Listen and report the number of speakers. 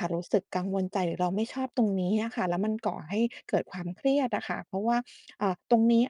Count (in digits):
1